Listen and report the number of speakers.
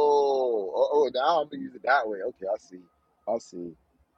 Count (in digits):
1